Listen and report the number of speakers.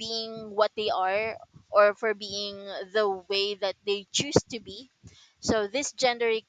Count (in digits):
1